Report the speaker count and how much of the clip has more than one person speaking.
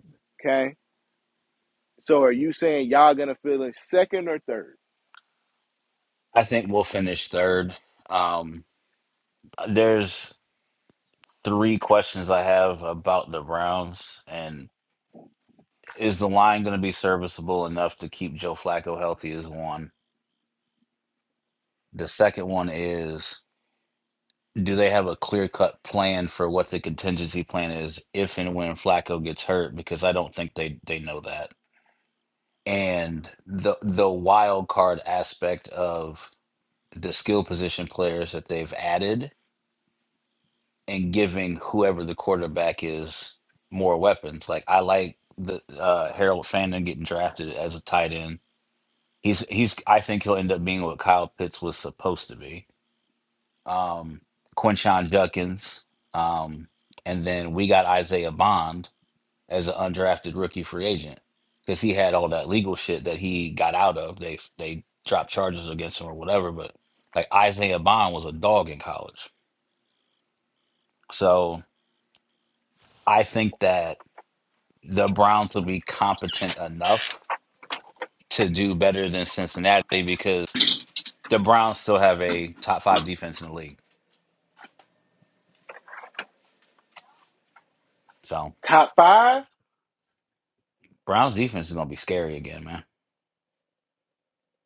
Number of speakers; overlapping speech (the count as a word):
two, no overlap